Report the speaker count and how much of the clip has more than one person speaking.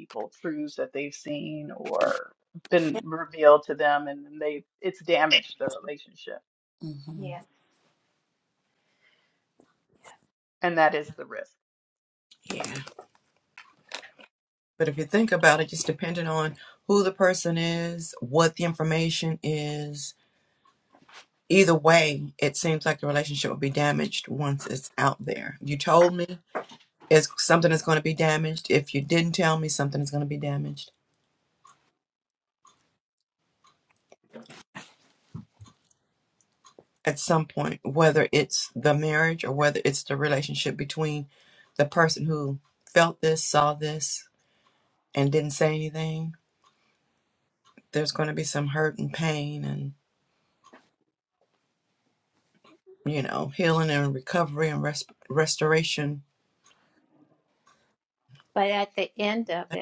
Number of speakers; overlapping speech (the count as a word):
three, under 1%